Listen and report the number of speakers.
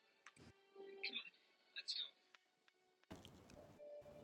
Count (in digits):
0